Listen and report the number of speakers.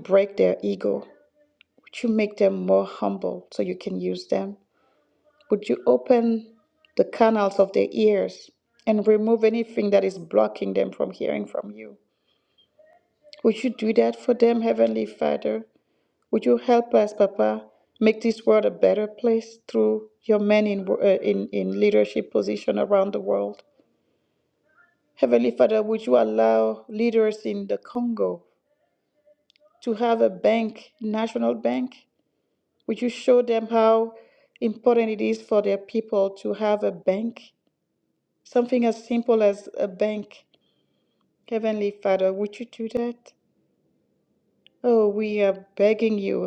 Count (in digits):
1